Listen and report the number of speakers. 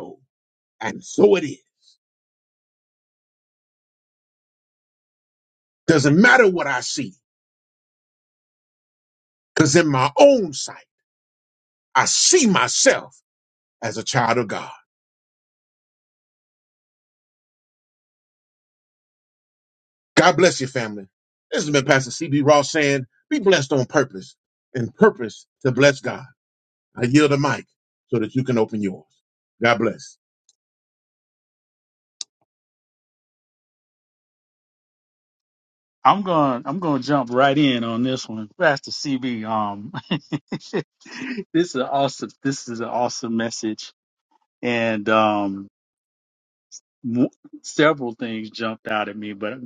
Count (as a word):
two